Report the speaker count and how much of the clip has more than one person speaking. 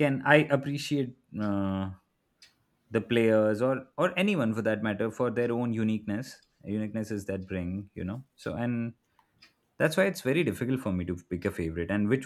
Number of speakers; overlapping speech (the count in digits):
1, no overlap